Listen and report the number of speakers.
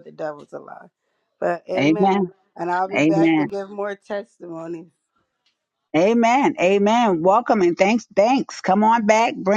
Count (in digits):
2